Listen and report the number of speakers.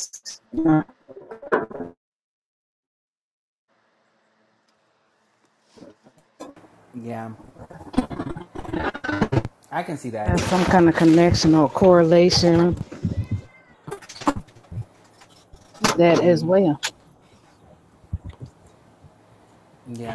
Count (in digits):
2